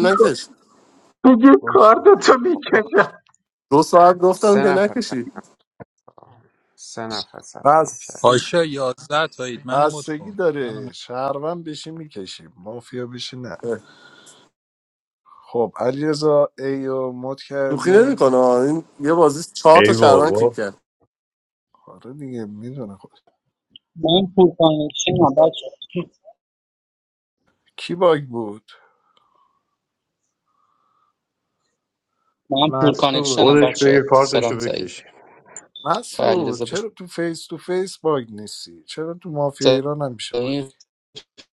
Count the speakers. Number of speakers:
7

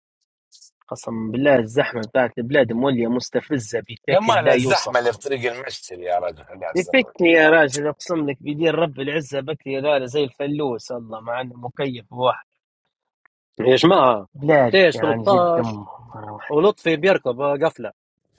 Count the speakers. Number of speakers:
3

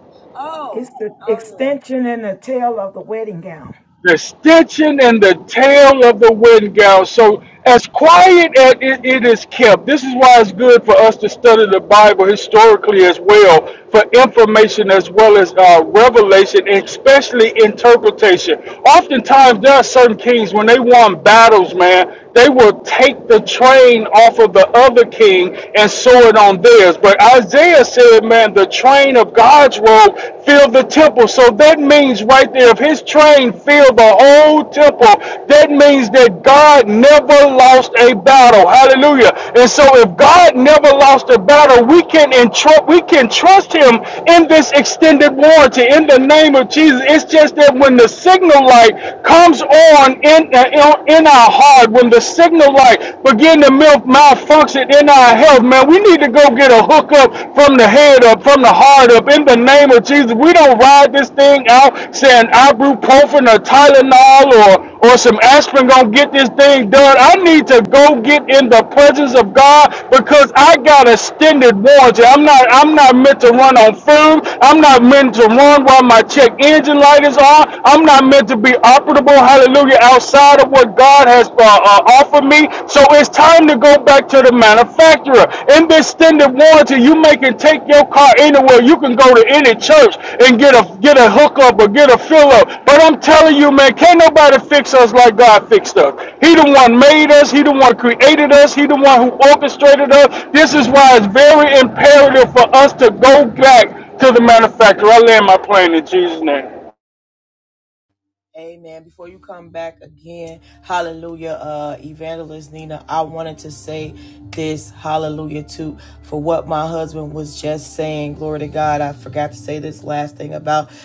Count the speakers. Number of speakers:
3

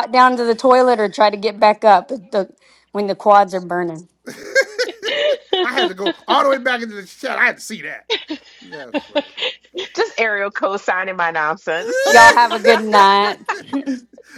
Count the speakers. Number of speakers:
3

